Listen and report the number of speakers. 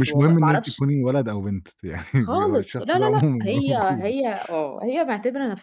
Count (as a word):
two